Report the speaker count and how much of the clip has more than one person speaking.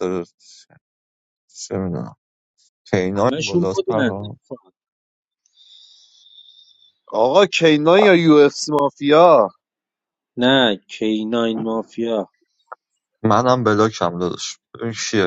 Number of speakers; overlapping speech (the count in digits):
3, about 8%